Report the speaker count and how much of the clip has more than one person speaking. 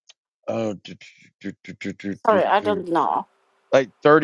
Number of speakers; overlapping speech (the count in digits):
2, about 13%